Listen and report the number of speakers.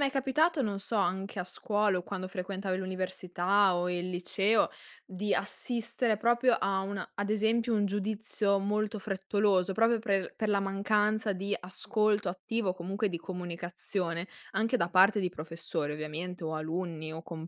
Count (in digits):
1